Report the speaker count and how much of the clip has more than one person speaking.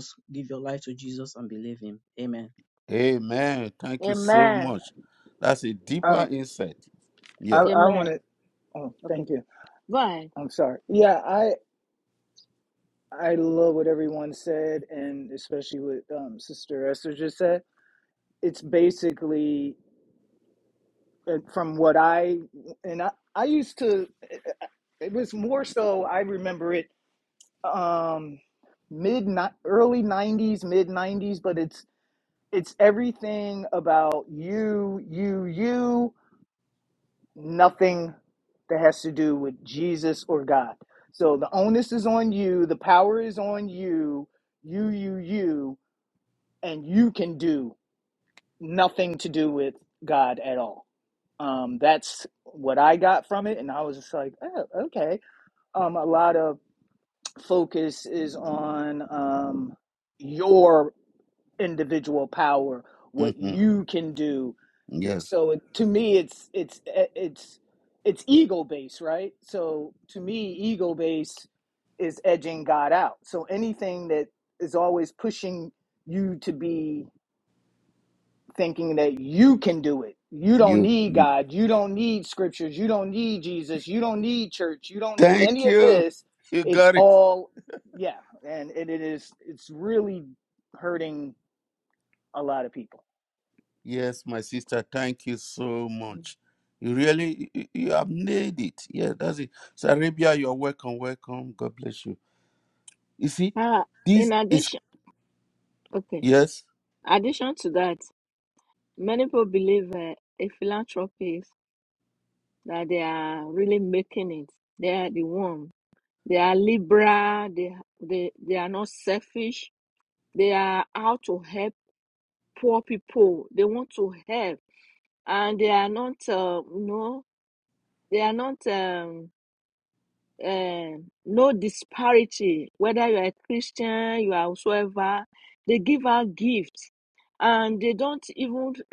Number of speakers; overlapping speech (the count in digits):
4, about 3%